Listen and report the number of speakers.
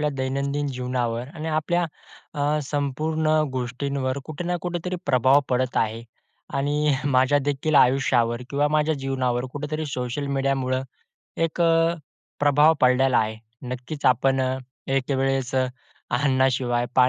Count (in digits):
1